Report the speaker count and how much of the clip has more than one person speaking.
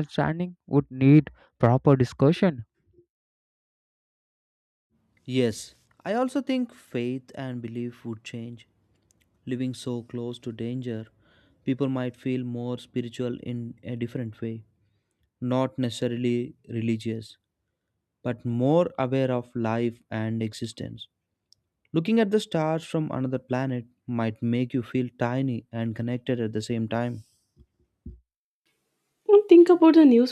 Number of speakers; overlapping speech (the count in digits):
3, no overlap